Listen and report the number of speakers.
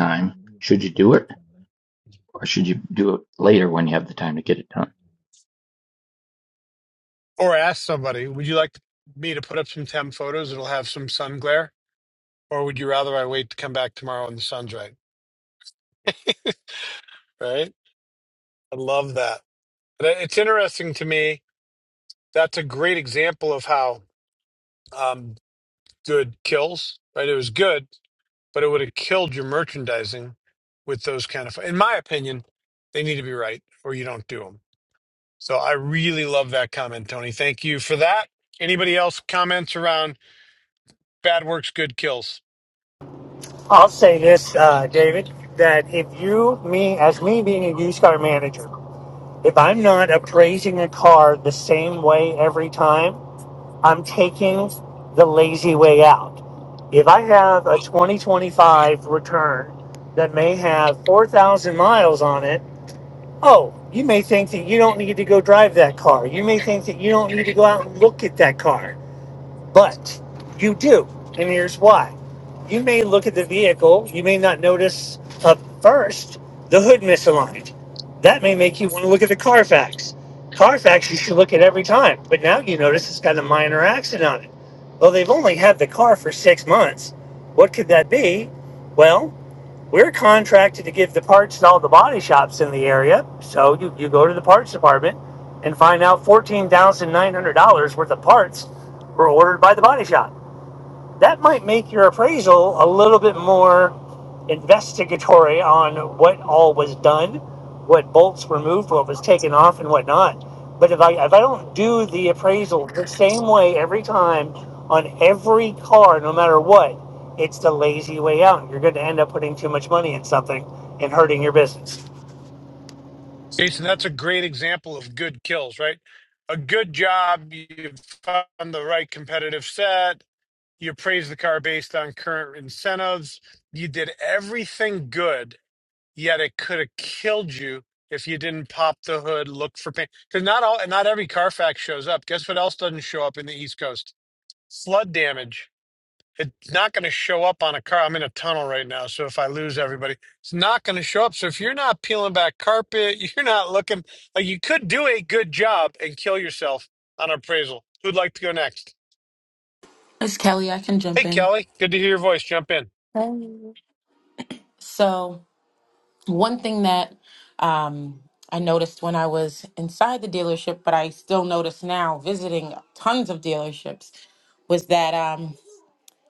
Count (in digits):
4